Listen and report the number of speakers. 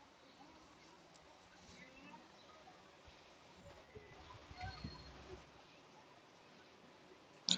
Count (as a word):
zero